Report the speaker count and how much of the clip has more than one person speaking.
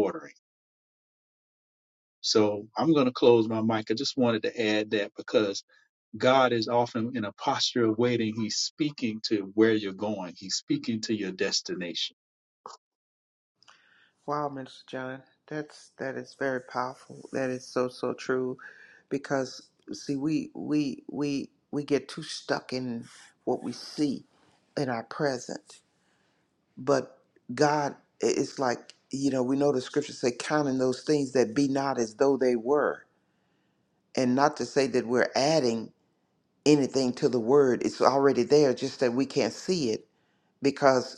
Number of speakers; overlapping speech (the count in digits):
2, no overlap